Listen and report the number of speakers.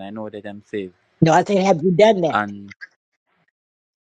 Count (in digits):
2